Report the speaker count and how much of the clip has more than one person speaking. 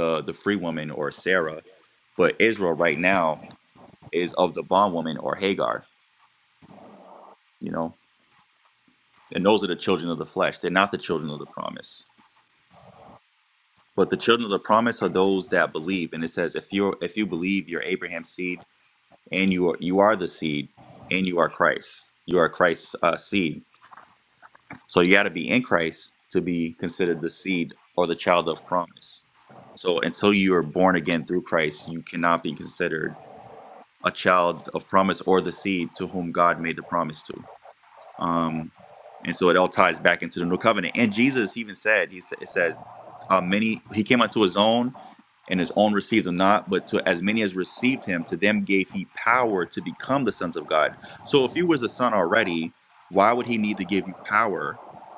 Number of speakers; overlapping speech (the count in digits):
1, no overlap